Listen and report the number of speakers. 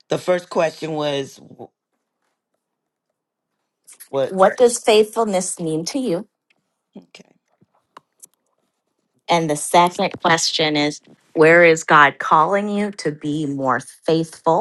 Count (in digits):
2